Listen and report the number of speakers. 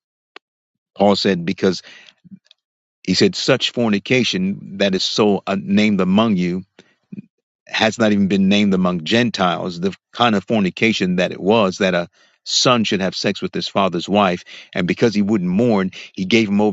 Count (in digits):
1